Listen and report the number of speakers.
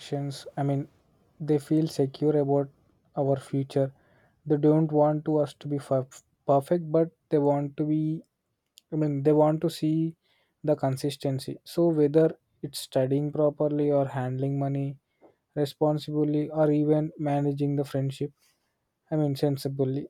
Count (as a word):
one